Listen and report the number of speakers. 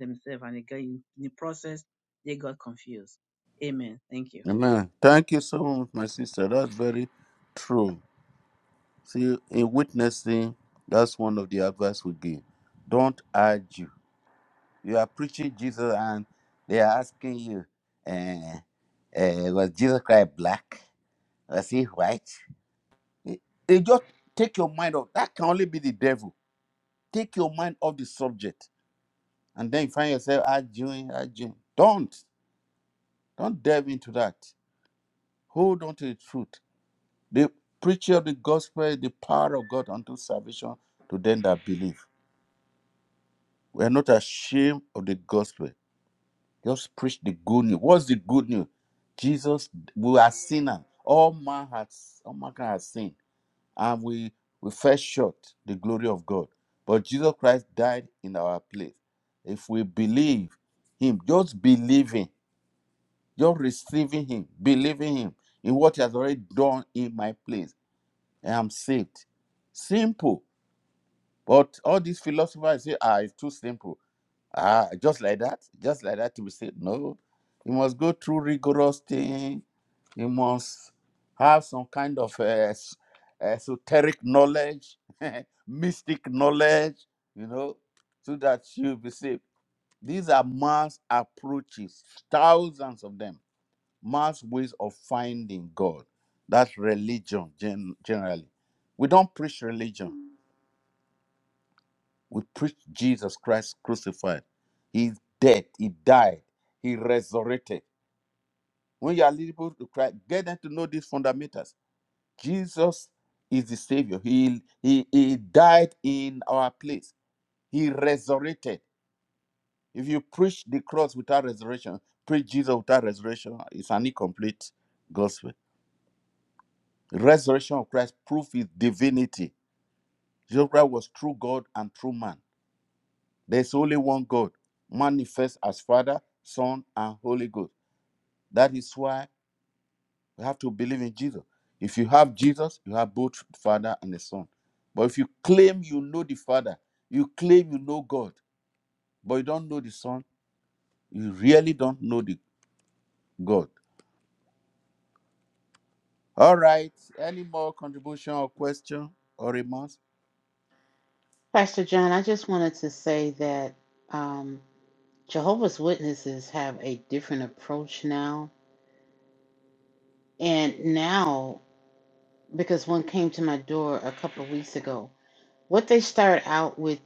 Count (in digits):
3